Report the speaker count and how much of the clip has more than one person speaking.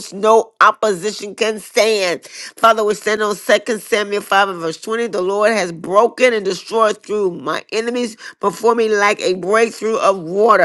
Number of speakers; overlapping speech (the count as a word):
one, no overlap